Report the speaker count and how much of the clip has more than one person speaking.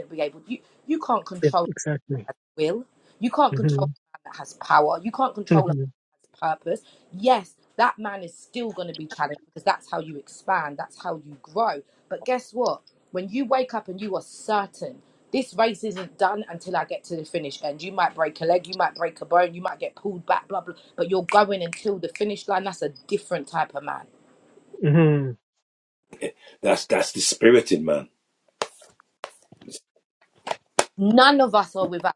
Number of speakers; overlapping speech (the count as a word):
three, about 3%